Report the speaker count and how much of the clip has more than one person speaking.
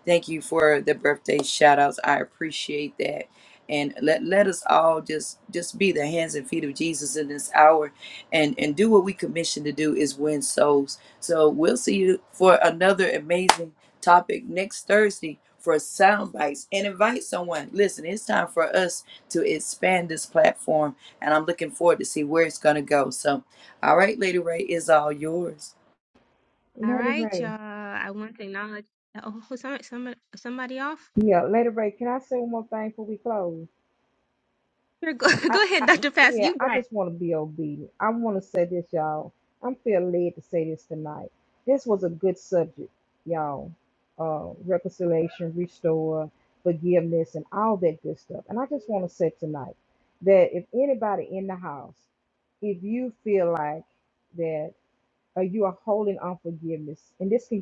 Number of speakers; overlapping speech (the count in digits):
3, about 3%